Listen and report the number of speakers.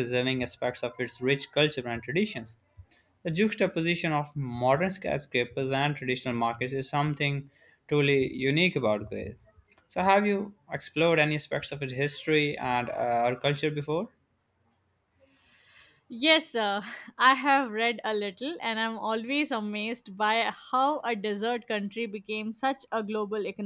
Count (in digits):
2